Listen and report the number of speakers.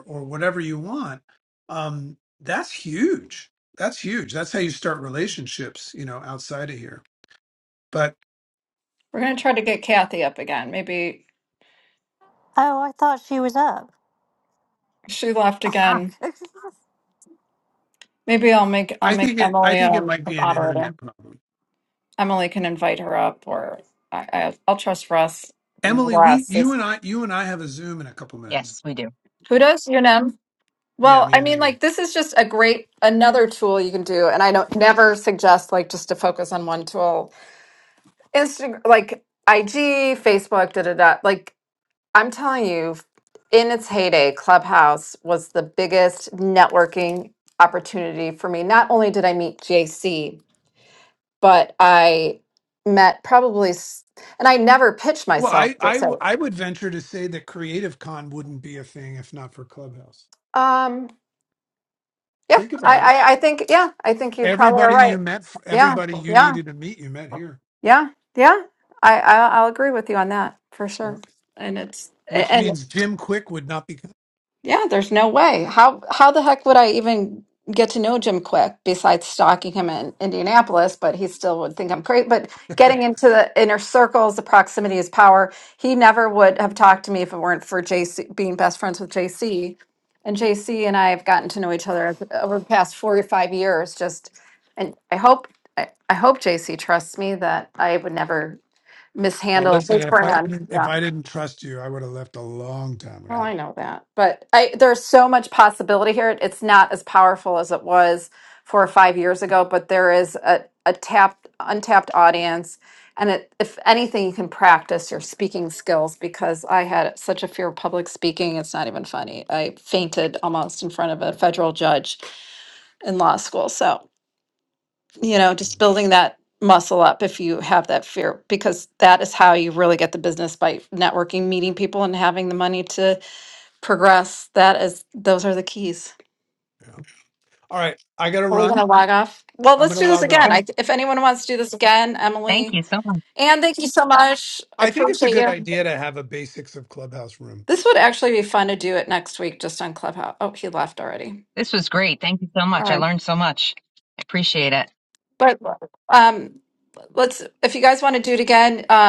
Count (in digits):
4